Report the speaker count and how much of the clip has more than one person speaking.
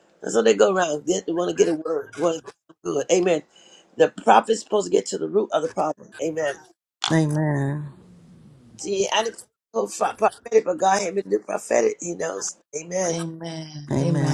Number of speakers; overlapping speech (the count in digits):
3, about 4%